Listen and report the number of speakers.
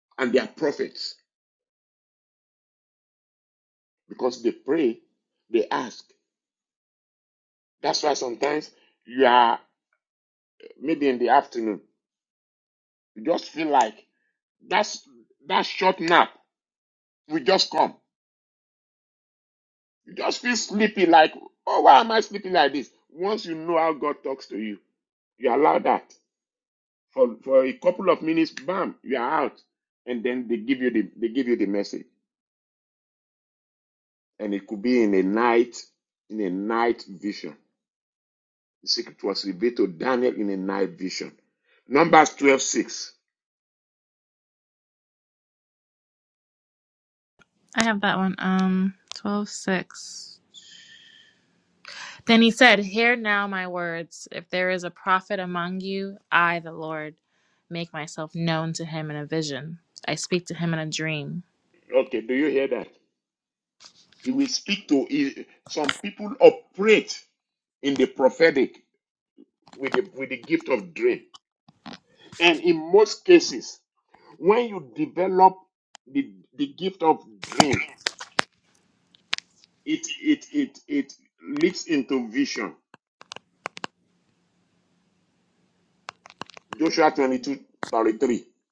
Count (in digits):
2